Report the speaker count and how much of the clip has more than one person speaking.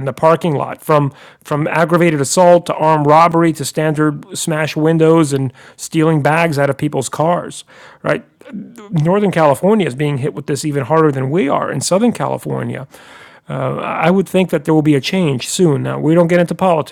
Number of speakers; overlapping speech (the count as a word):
one, no overlap